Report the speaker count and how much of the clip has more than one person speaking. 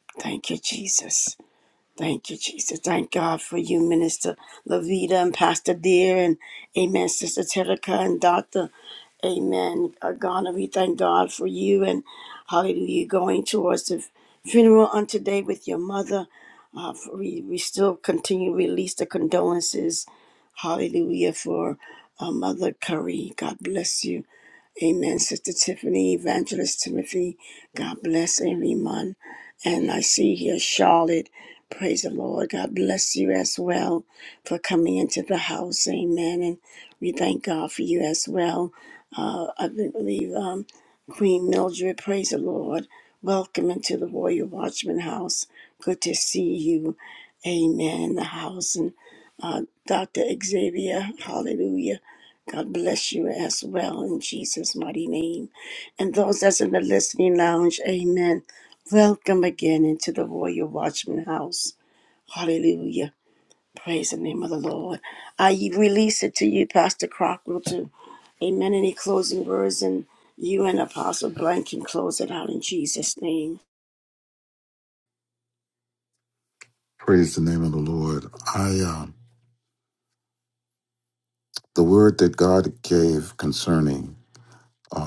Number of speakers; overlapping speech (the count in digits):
2, no overlap